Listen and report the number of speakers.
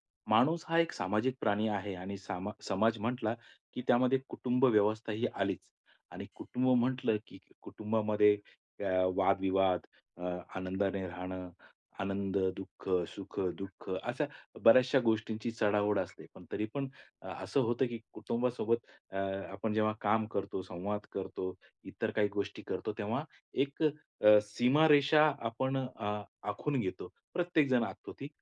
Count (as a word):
one